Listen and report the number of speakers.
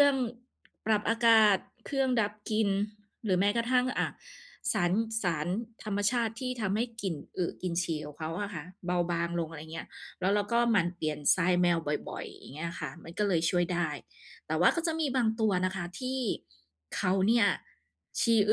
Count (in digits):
1